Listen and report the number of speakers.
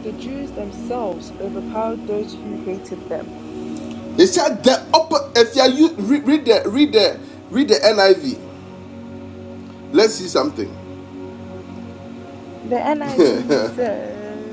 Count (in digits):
2